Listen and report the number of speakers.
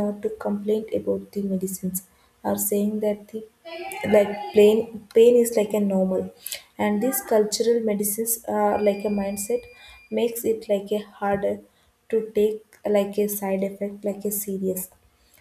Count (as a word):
one